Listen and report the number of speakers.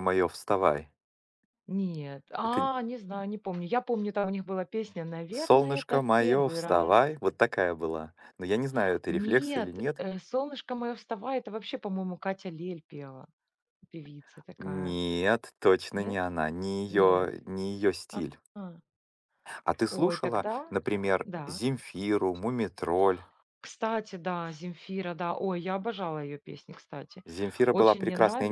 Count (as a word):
two